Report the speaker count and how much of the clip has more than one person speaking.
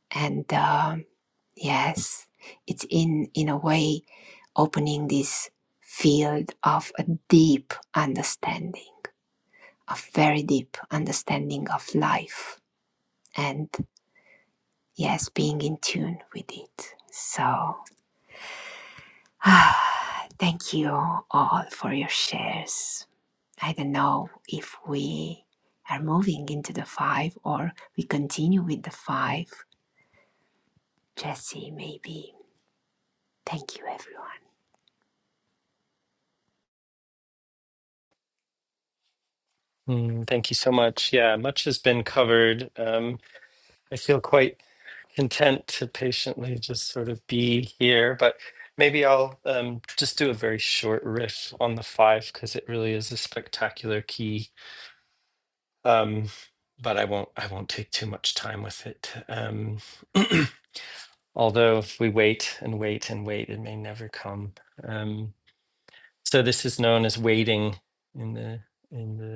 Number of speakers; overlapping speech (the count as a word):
two, no overlap